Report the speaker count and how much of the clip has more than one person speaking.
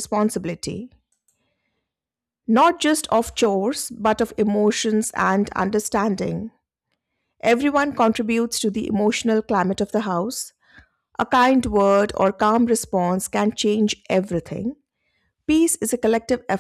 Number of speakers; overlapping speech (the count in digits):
1, no overlap